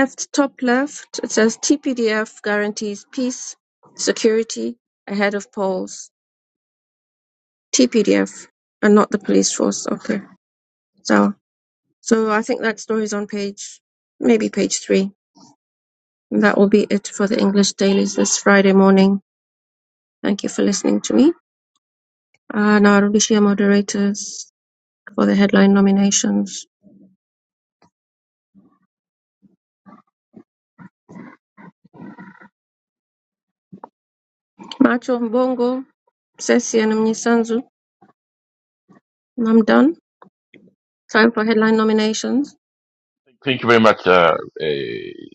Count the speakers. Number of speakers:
two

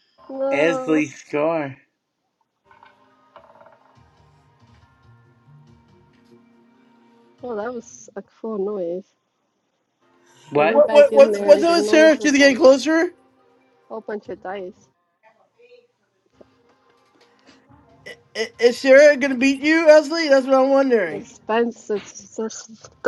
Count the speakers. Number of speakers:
three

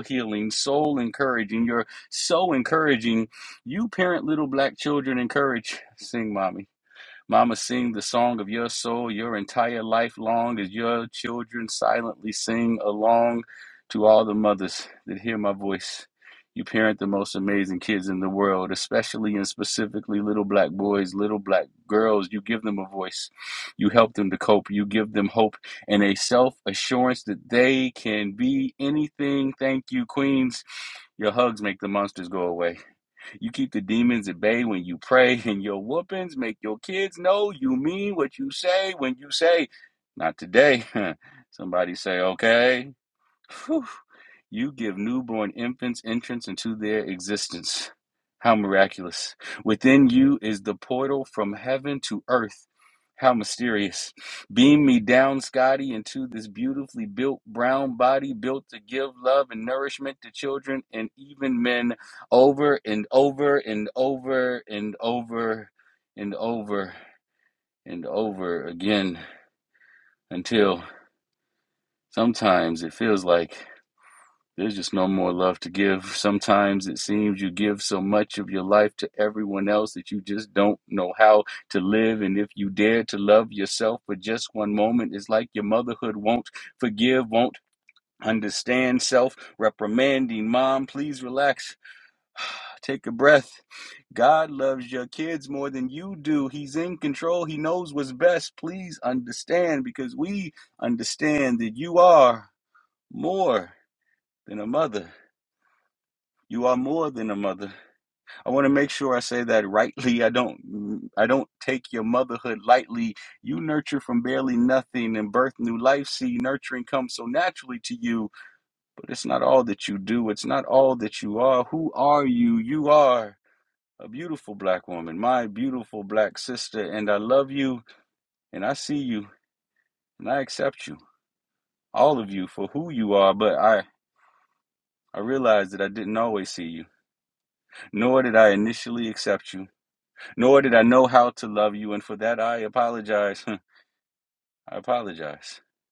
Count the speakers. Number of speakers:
one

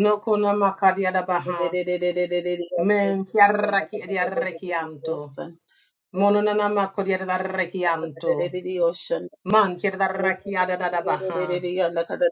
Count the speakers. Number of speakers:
two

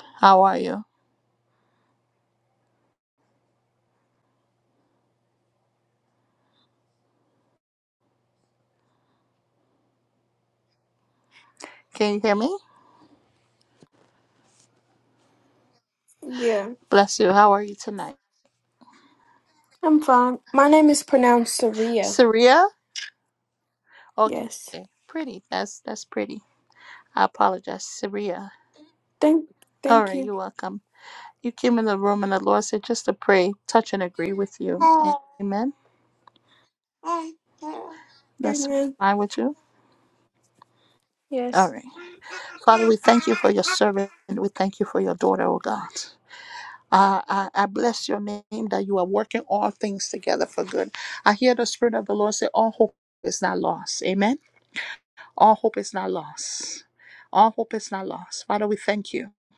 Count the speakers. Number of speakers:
two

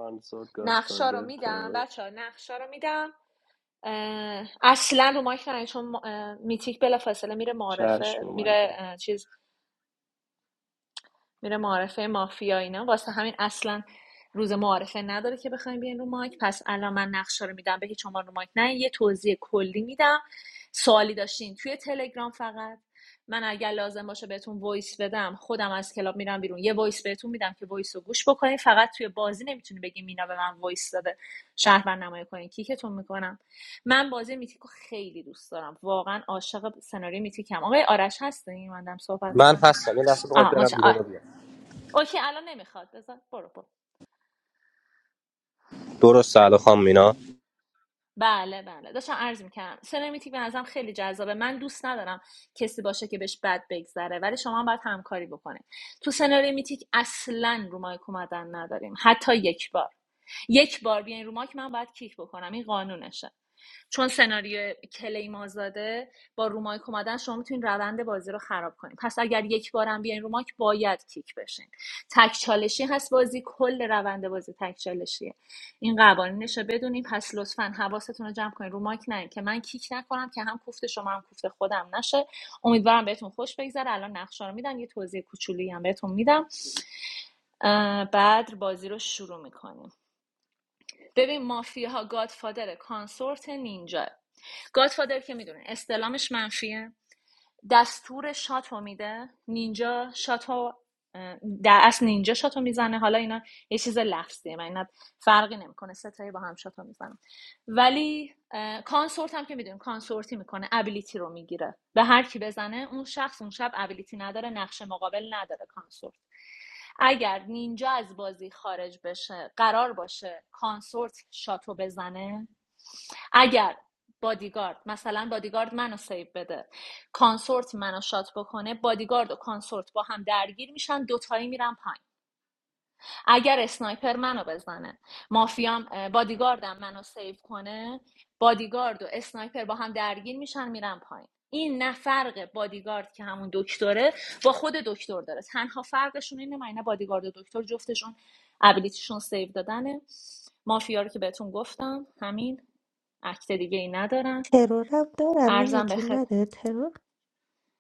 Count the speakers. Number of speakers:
four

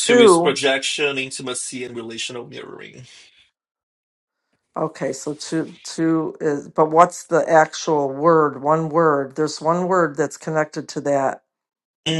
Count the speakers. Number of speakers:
two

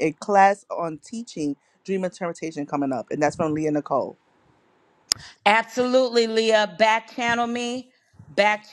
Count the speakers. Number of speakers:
two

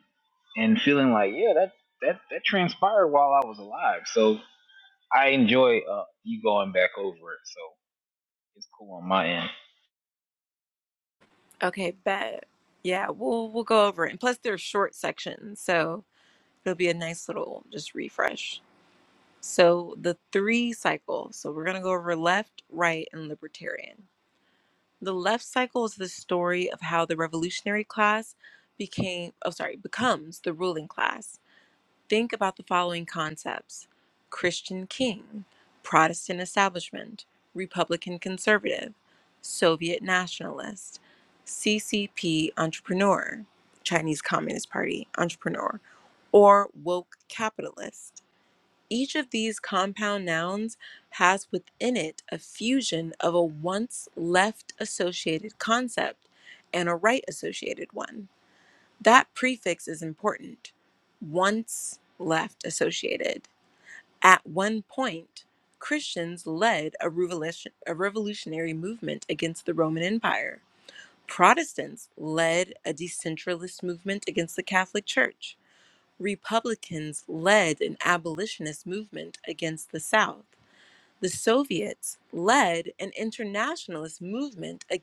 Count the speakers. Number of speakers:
two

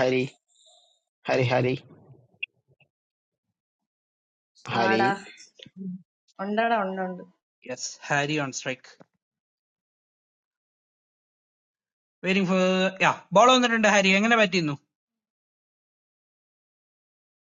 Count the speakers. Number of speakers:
three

